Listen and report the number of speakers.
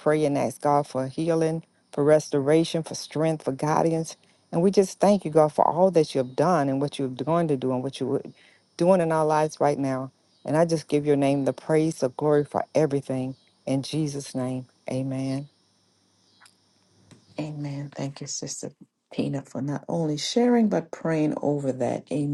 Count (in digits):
2